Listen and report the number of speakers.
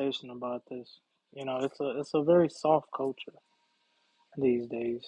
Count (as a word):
one